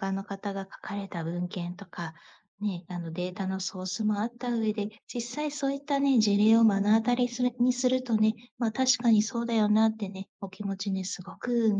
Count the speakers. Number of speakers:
one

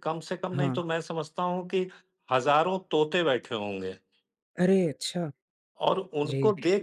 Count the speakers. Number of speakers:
two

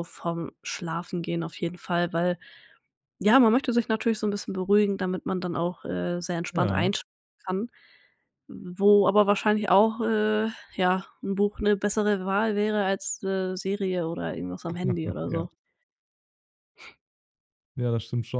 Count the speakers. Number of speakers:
two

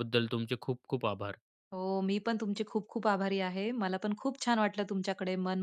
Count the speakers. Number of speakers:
two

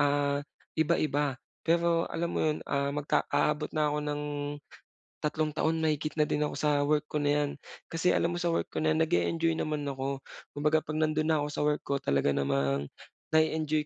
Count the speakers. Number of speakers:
one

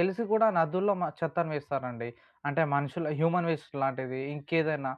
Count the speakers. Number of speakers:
one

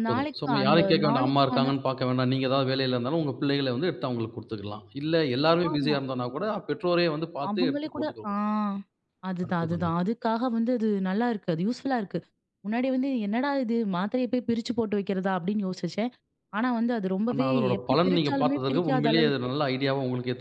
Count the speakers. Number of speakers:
two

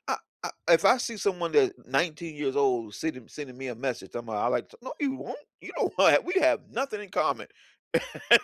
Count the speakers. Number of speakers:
one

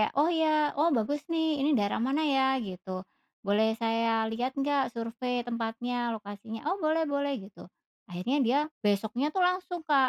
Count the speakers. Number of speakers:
one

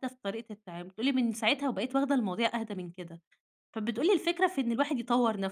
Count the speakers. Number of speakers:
one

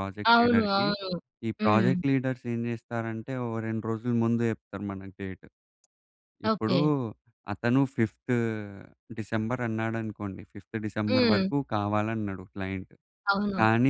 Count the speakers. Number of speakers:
two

